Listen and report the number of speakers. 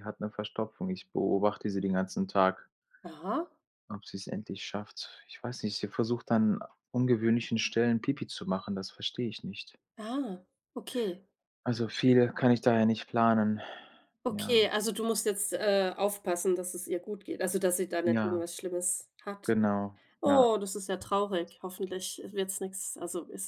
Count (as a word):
two